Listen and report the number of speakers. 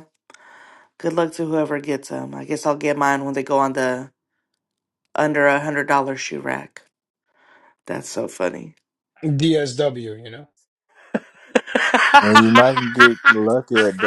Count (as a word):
three